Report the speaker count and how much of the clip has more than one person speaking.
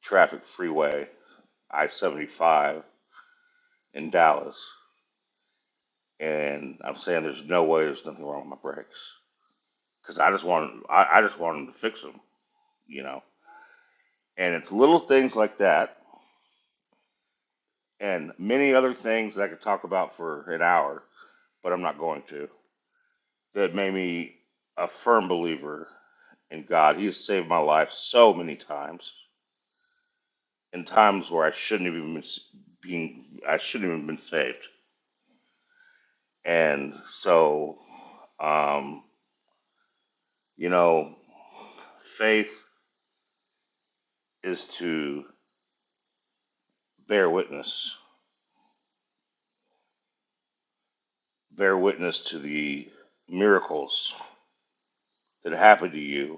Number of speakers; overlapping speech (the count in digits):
1, no overlap